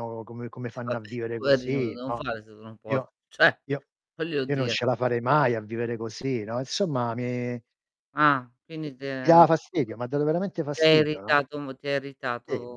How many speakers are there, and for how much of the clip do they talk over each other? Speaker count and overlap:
two, about 23%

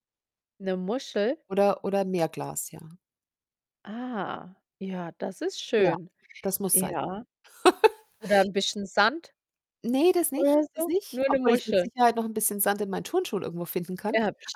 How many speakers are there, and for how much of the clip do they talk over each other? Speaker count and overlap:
two, about 14%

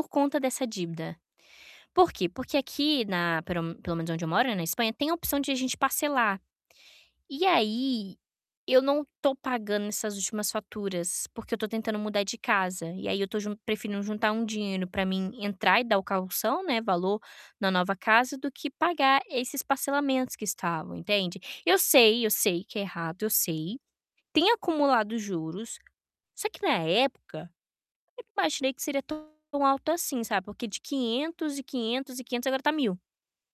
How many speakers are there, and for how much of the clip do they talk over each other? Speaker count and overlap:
one, no overlap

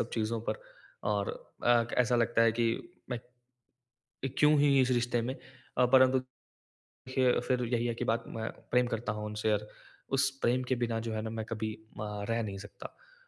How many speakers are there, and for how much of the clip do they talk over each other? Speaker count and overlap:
one, no overlap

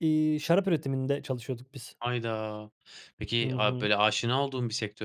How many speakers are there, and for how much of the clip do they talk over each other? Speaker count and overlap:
two, about 9%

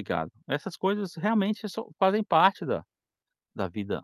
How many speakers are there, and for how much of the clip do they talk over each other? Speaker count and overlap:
one, no overlap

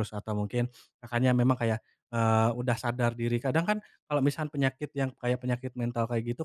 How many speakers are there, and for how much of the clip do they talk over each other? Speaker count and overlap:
one, no overlap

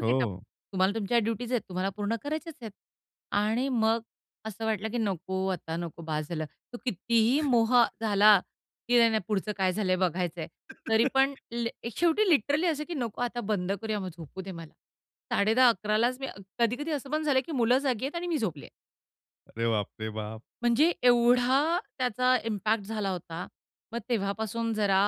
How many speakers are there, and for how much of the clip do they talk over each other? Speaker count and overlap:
two, about 1%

